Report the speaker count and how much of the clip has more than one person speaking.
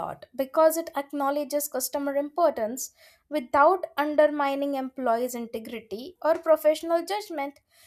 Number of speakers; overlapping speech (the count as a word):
one, no overlap